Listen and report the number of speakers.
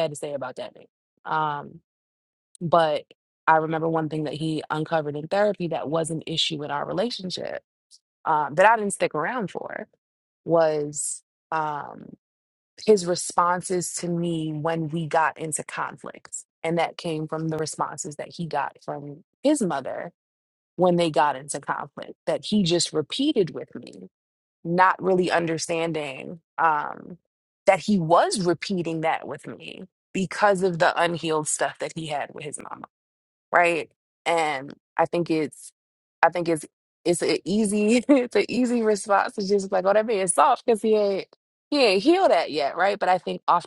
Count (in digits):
1